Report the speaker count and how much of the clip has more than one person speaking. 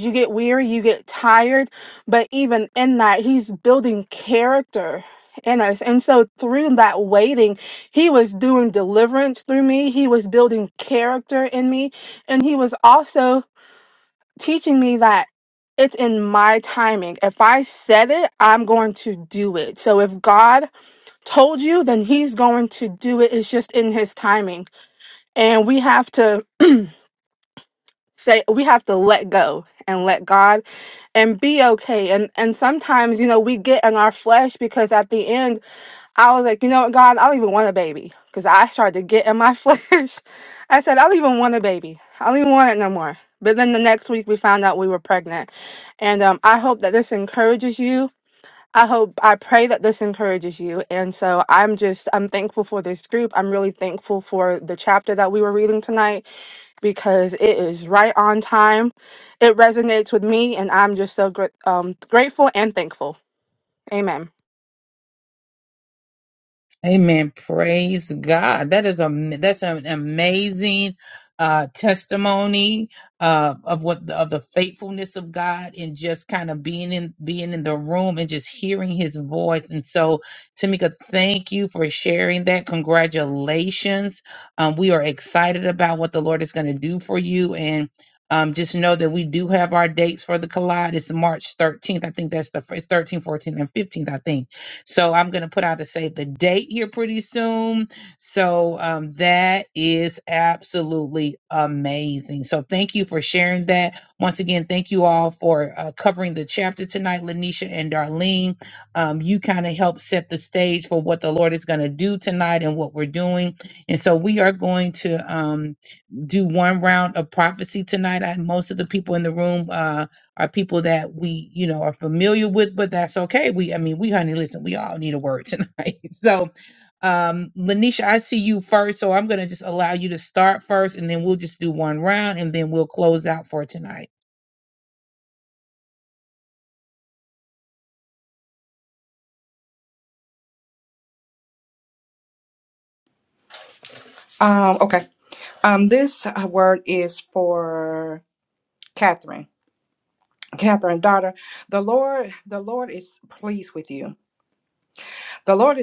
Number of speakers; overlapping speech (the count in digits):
3, no overlap